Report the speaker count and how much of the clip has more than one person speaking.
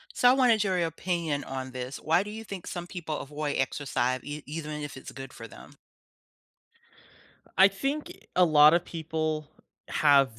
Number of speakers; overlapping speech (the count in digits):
2, no overlap